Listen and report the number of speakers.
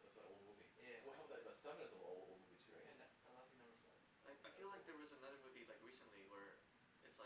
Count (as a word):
three